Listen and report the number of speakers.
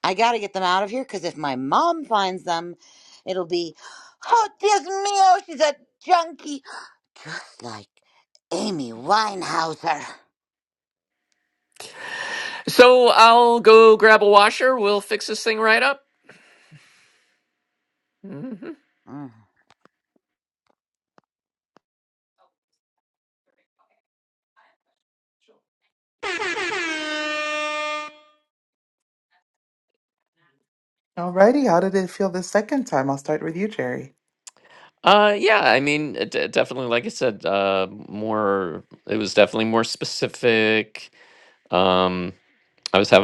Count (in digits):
3